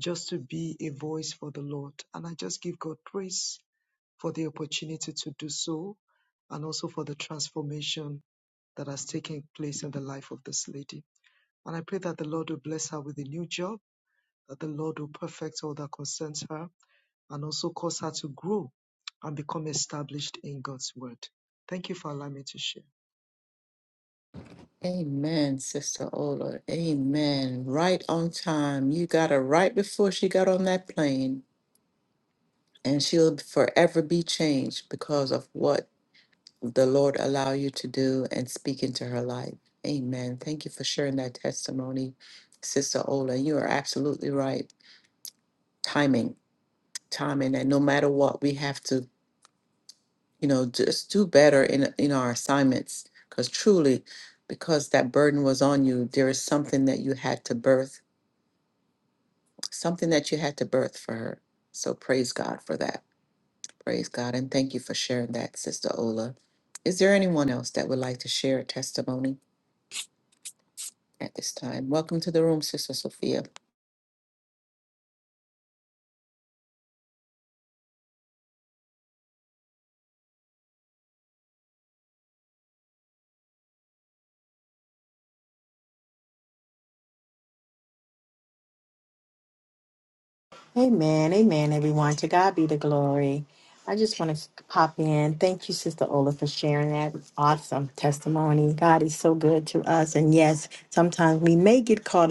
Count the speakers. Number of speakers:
three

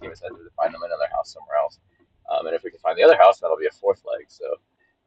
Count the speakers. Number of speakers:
one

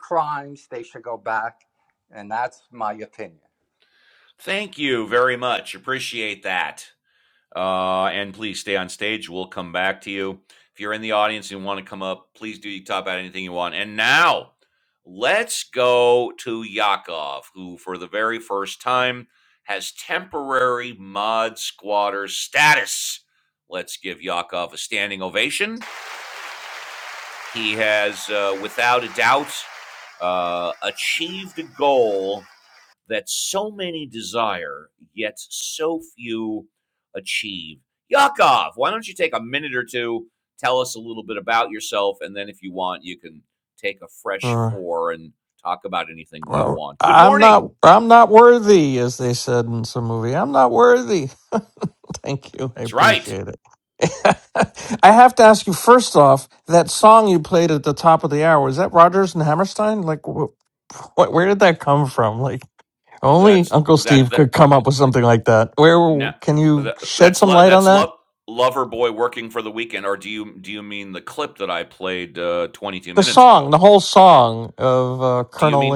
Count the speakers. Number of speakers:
three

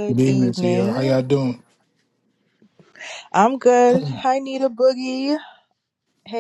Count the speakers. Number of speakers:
two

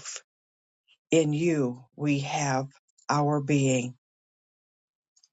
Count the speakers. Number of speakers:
one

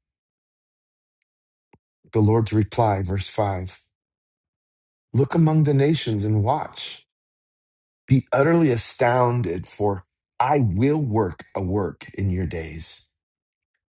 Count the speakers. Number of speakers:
one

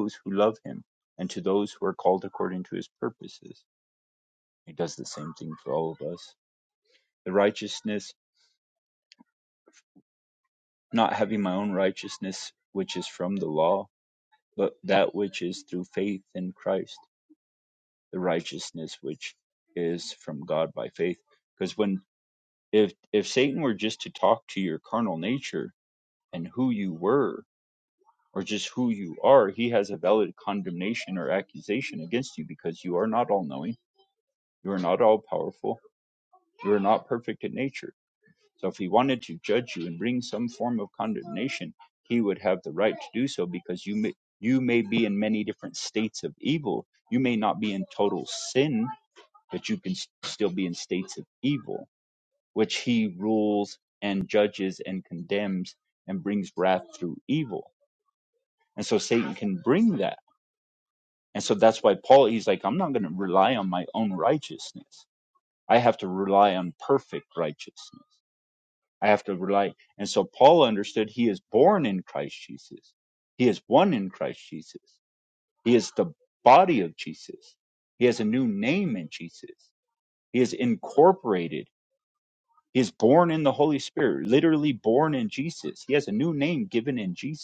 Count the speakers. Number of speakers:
one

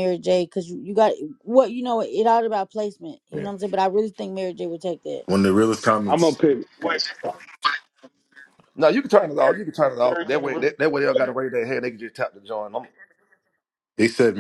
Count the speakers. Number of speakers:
four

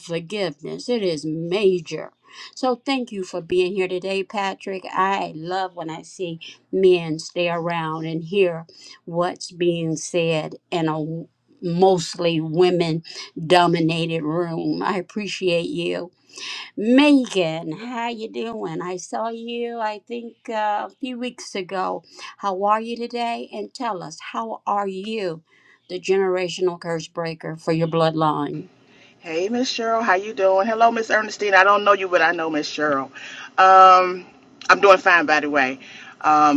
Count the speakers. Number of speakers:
two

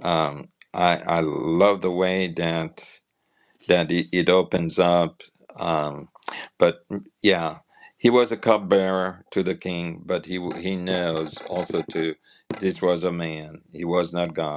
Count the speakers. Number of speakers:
one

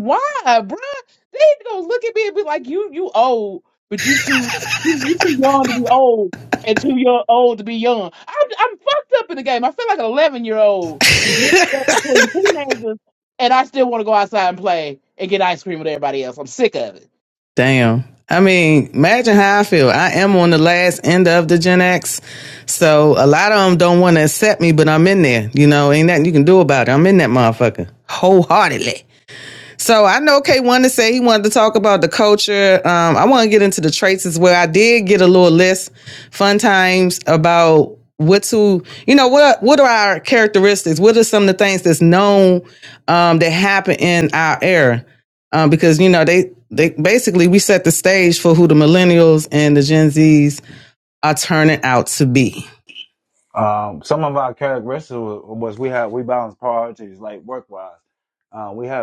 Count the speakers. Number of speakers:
three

